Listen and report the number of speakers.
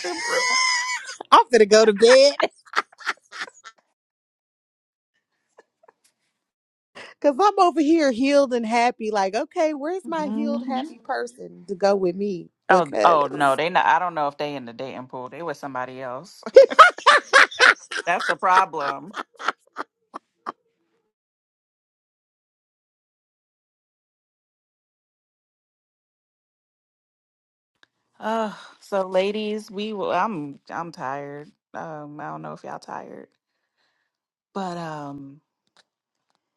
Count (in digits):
2